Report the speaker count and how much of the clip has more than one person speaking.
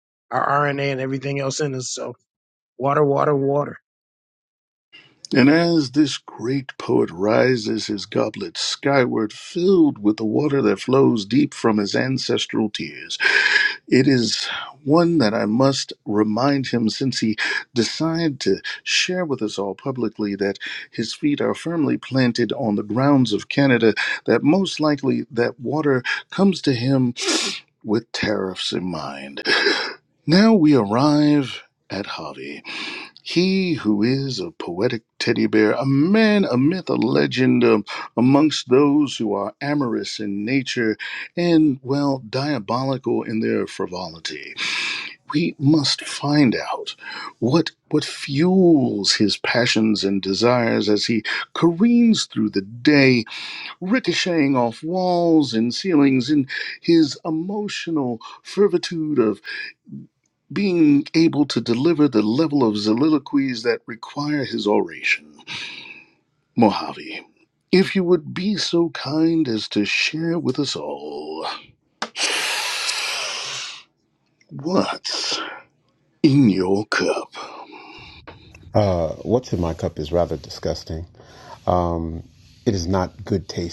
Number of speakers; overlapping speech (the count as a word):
three, no overlap